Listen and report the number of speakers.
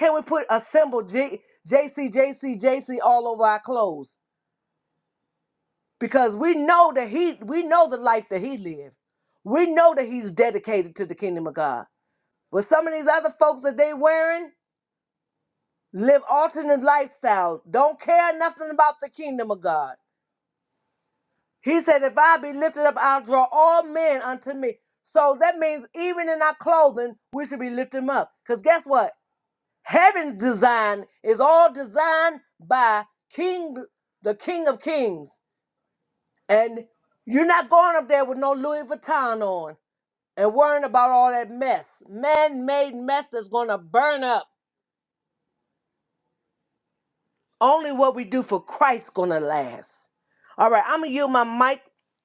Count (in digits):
1